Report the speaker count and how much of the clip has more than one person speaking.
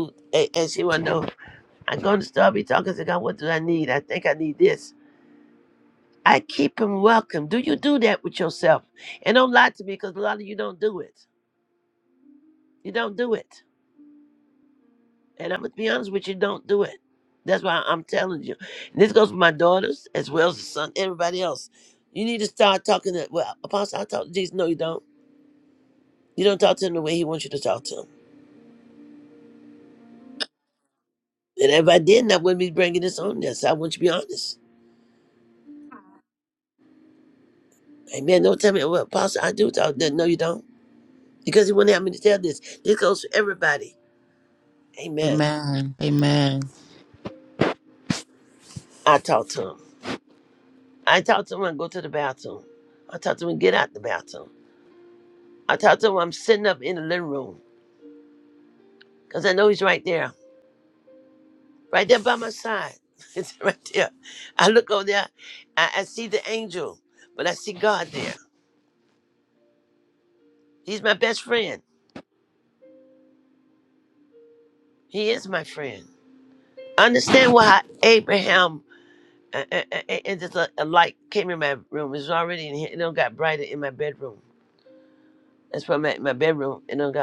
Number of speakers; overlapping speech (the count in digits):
2, under 1%